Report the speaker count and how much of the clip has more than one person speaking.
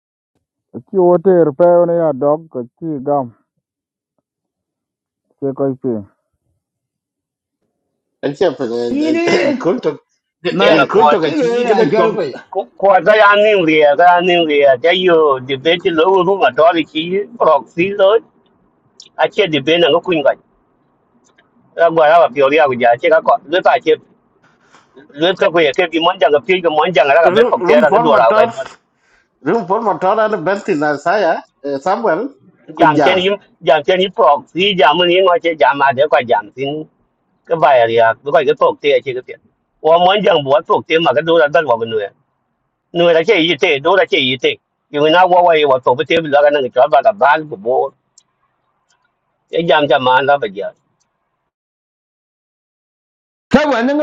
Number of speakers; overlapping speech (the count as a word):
four, about 6%